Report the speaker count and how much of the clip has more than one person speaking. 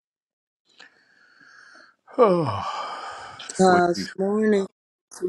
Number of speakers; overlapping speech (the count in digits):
2, about 10%